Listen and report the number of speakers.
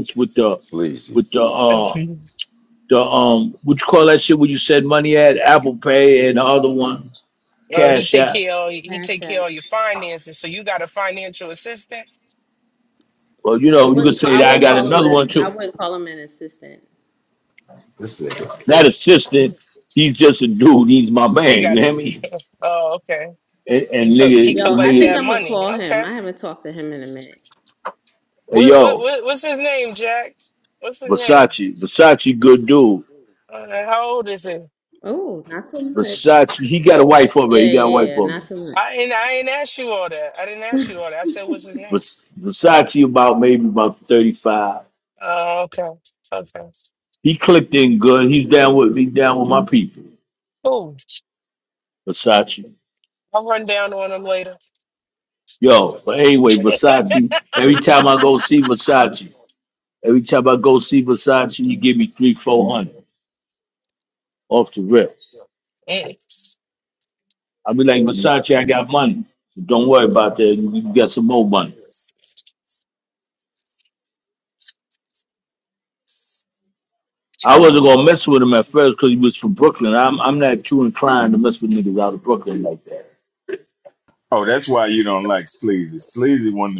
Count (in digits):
5